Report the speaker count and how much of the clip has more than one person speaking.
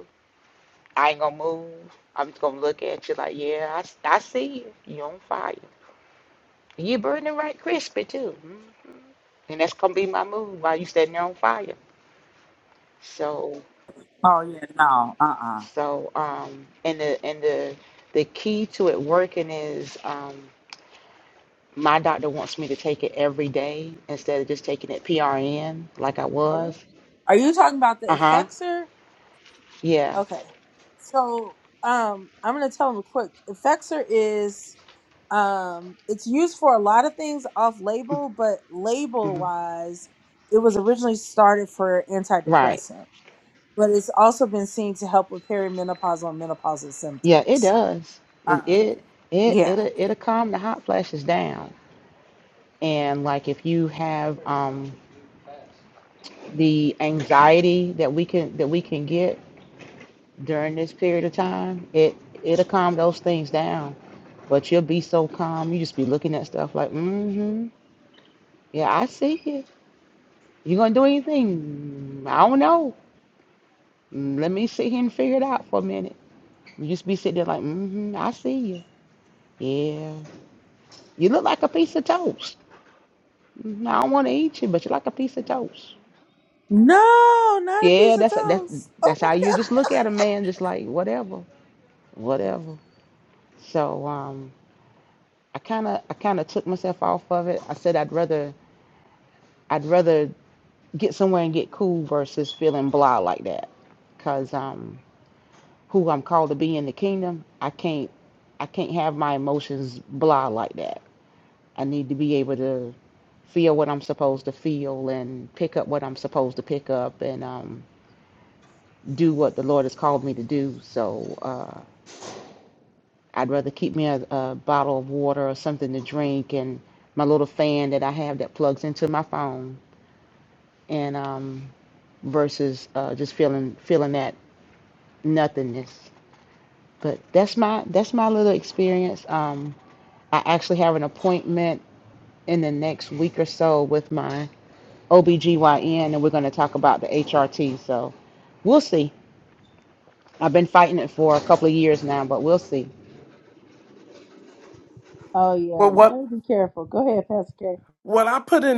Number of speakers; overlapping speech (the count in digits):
4, about 2%